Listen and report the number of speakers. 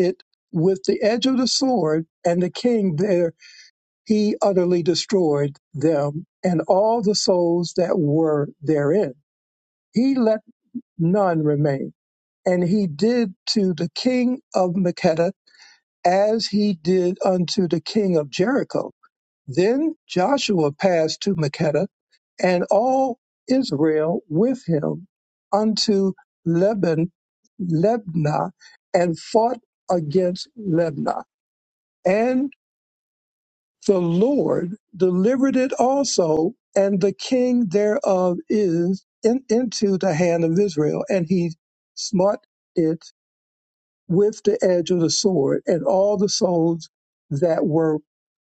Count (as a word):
one